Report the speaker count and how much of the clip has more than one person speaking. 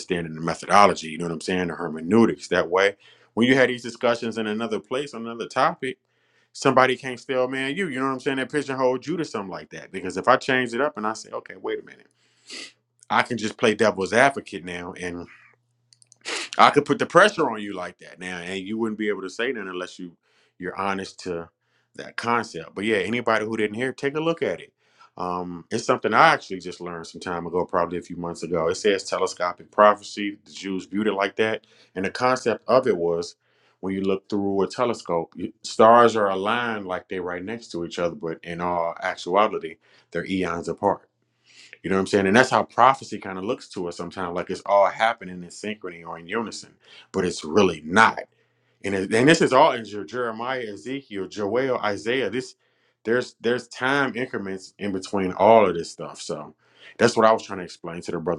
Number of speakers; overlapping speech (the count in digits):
1, no overlap